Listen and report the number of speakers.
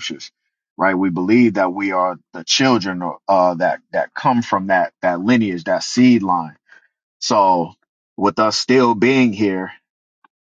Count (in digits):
1